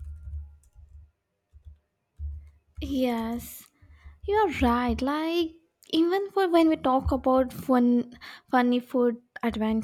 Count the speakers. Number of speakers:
1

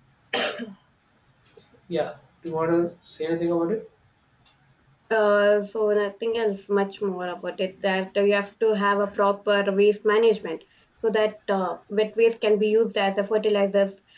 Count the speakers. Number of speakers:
2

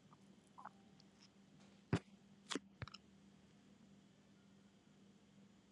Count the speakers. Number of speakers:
0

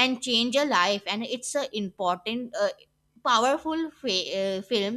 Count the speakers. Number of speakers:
1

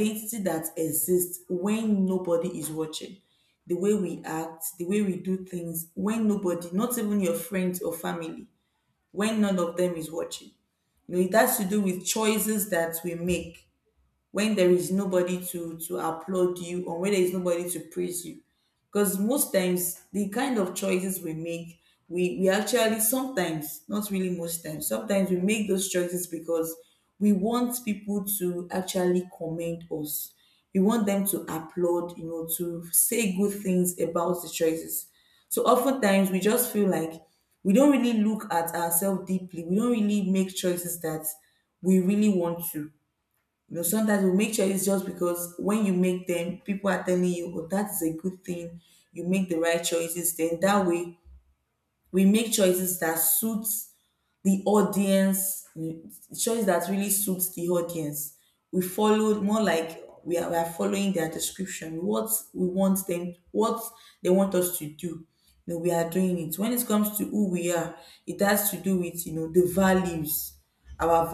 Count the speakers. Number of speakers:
1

